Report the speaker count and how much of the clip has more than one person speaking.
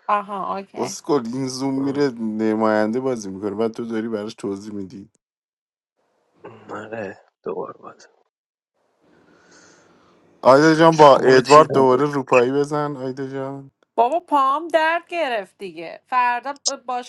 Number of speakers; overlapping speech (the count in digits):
3, about 9%